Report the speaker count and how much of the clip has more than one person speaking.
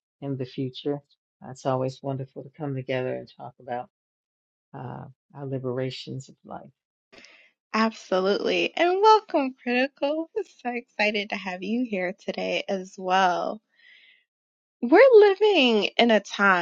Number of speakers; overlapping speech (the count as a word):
two, no overlap